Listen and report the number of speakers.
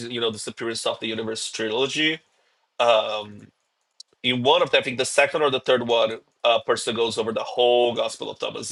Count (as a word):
one